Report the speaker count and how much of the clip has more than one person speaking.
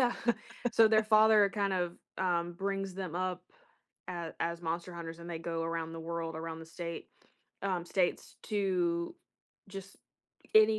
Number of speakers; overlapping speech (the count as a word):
one, no overlap